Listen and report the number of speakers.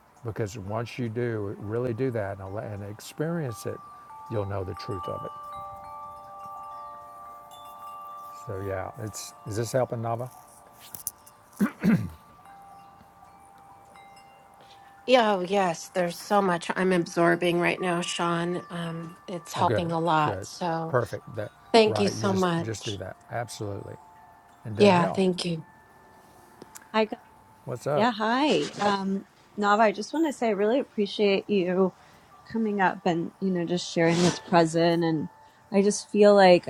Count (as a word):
three